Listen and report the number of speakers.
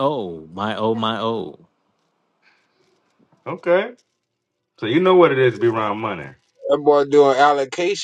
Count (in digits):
3